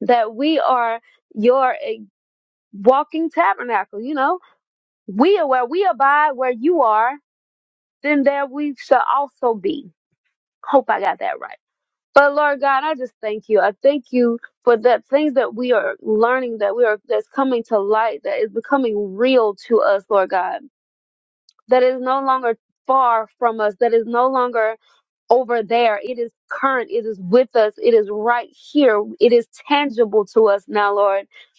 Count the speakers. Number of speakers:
1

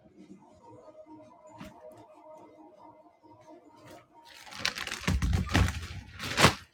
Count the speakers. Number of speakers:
0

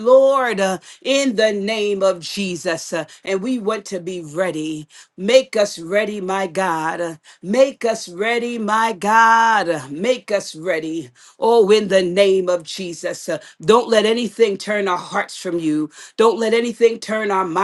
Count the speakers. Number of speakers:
1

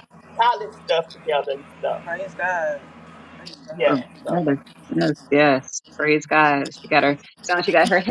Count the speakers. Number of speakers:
3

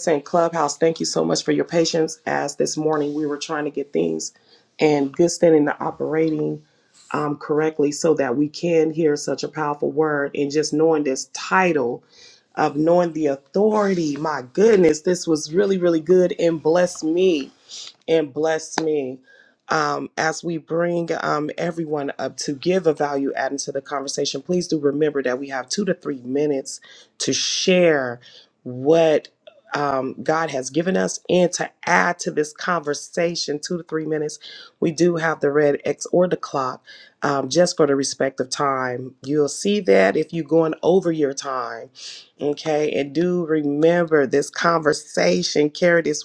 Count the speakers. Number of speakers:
1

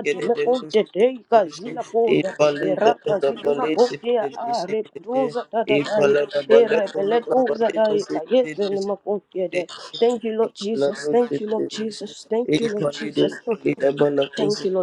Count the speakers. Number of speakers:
2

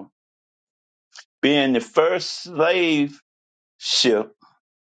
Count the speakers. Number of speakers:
1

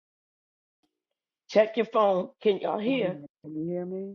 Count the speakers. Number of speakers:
2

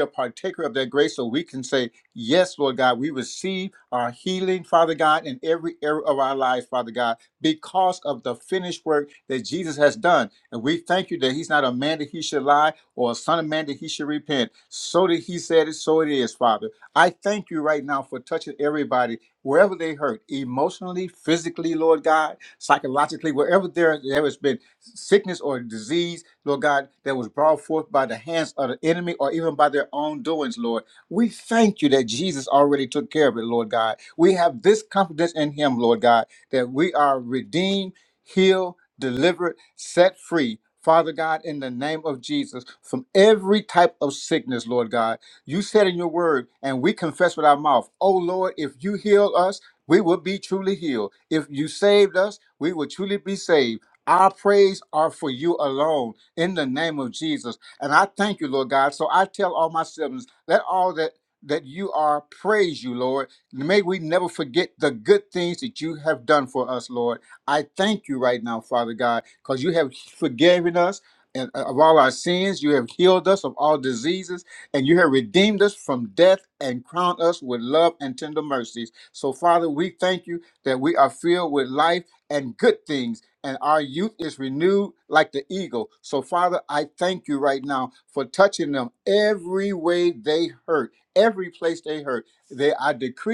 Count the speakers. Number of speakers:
1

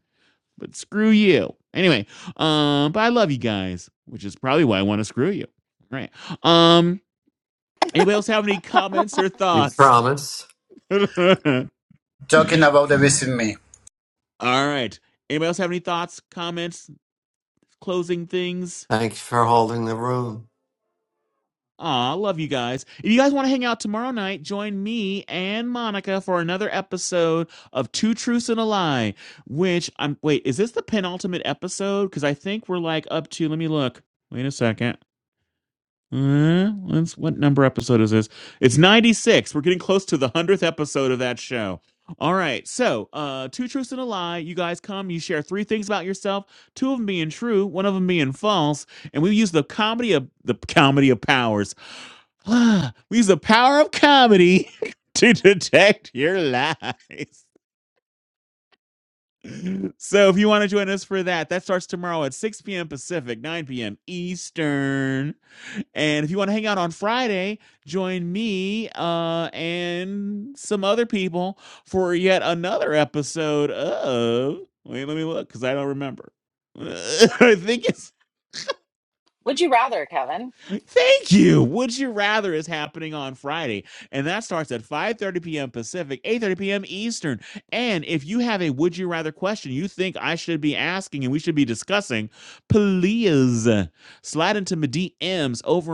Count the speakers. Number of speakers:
4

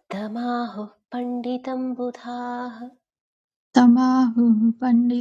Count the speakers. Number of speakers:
2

